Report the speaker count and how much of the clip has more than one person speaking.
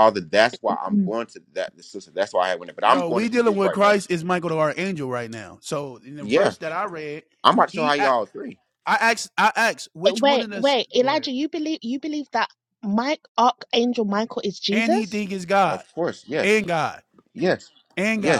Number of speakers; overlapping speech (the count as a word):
three, about 20%